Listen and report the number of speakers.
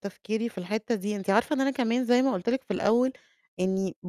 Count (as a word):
one